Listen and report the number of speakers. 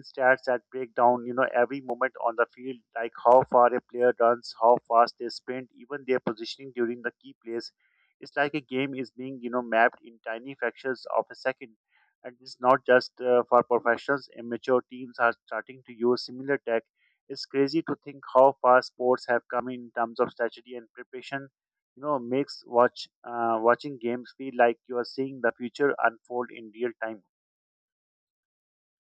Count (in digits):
1